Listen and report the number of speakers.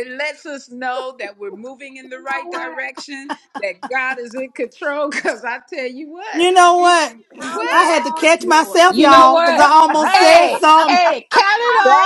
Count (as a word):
three